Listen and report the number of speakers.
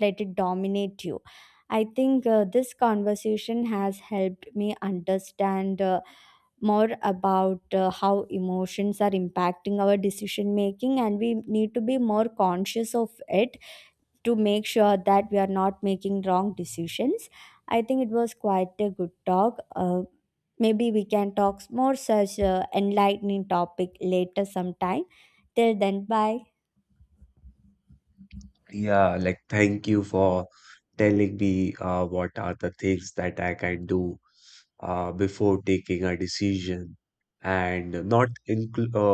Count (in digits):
2